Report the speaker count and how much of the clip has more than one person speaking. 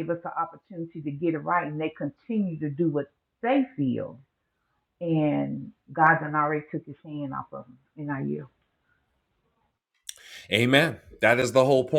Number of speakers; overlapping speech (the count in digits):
2, no overlap